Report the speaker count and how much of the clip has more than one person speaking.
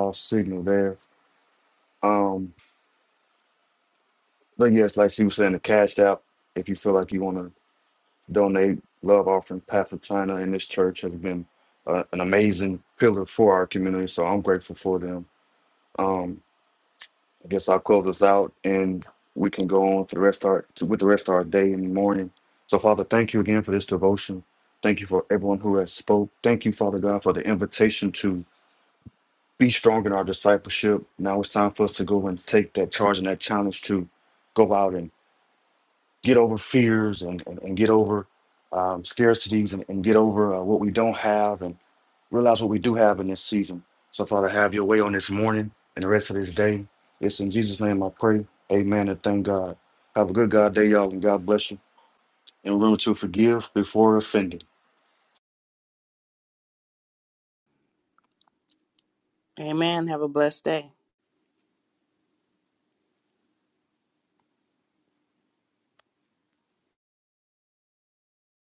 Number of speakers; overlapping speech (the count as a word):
two, no overlap